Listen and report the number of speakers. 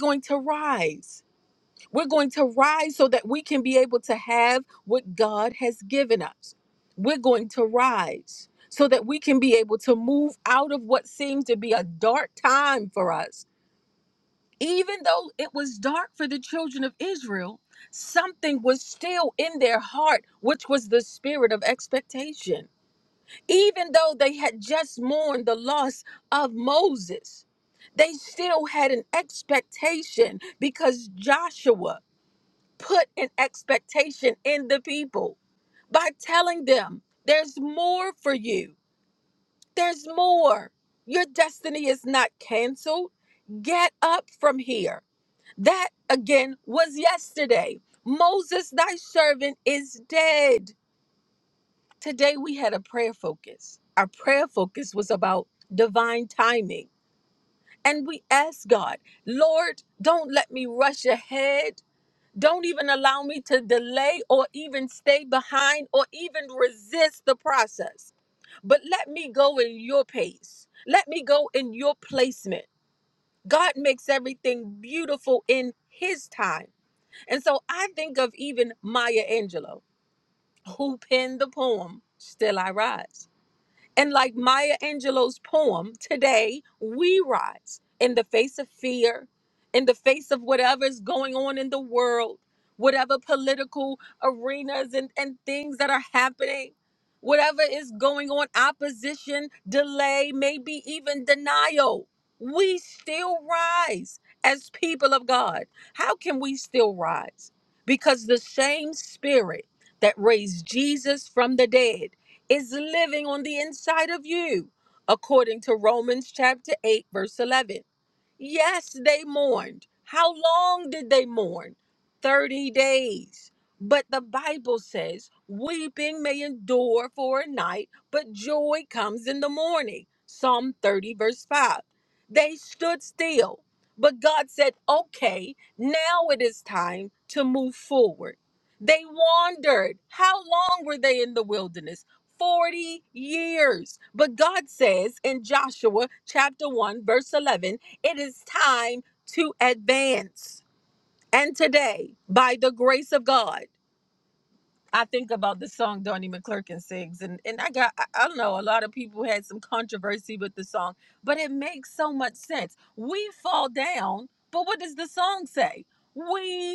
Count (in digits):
1